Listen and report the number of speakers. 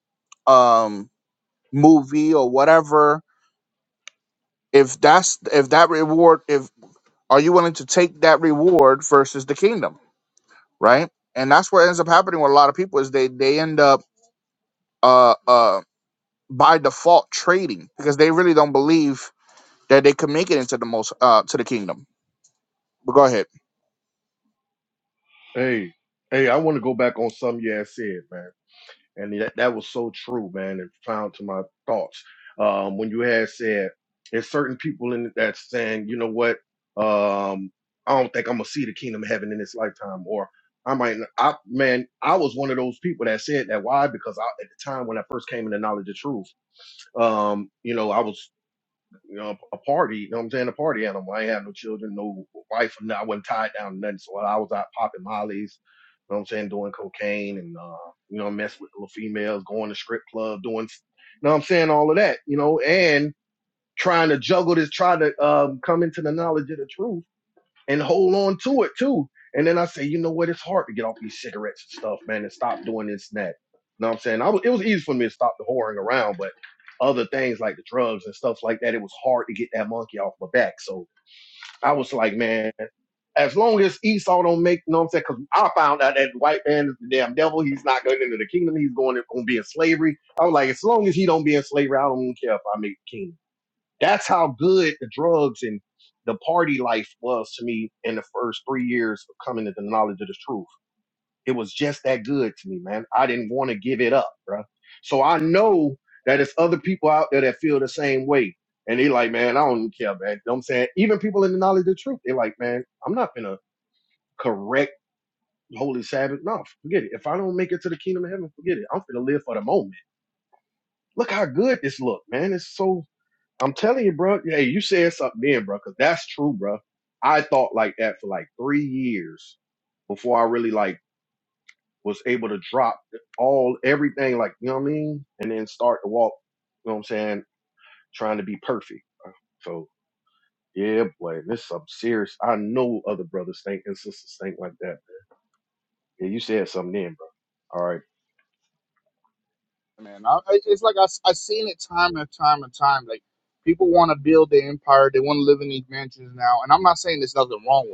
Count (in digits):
2